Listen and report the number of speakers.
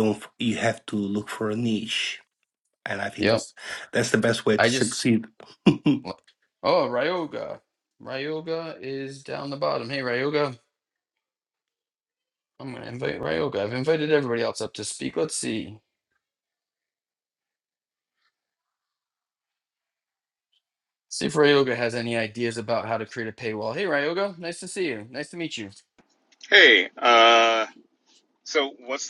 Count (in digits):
3